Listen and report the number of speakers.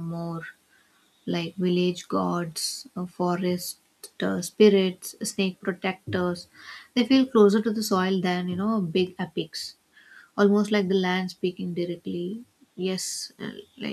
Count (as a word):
one